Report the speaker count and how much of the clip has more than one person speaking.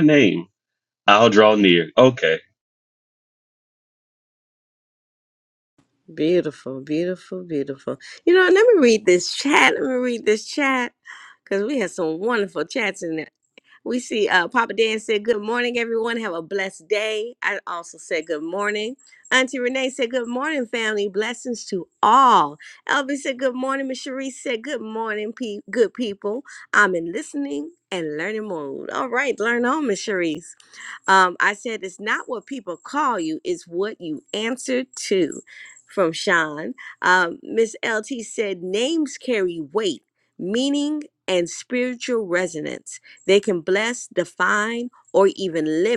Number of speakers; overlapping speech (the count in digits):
2, no overlap